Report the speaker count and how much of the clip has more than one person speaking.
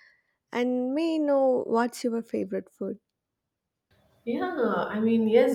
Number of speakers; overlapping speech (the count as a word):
two, no overlap